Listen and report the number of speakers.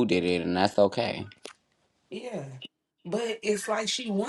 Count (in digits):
2